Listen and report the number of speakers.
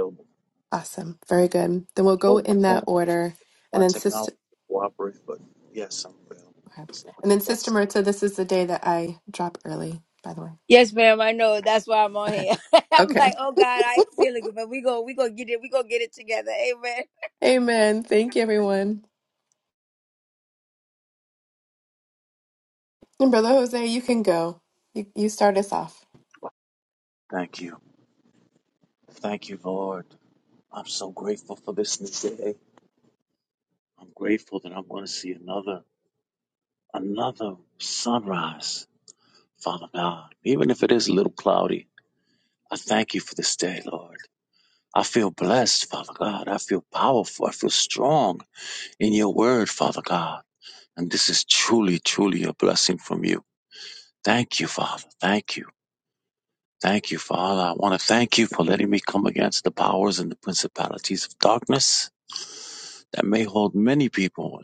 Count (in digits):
3